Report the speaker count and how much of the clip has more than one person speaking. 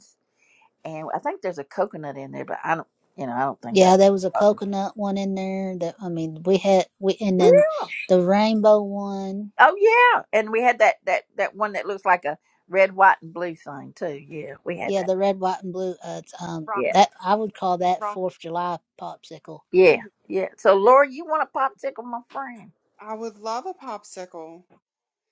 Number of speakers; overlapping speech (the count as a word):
three, about 6%